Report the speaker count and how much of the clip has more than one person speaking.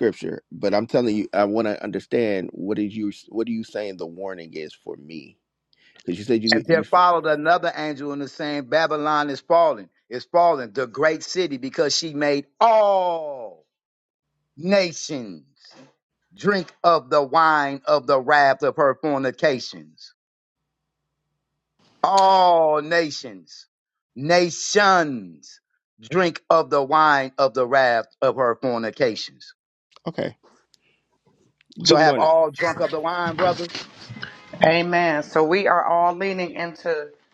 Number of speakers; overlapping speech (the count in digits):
3, about 2%